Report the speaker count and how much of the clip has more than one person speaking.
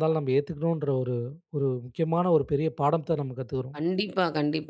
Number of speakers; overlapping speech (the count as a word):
two, about 4%